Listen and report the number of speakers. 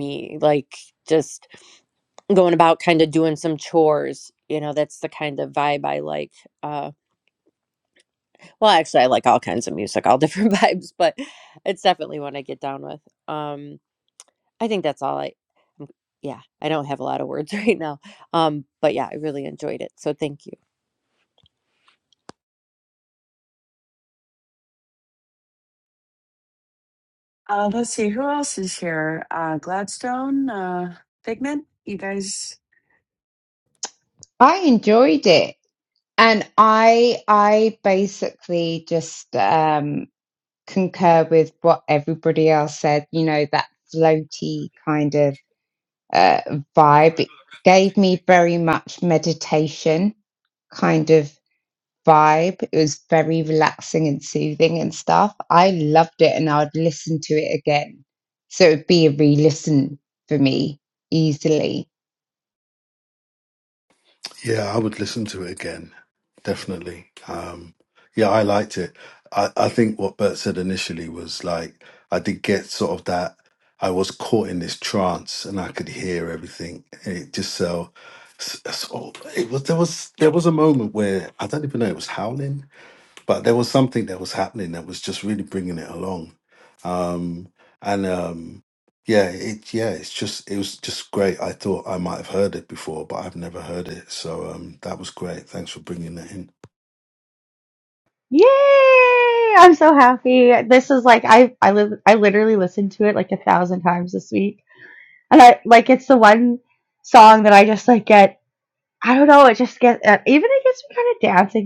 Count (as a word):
five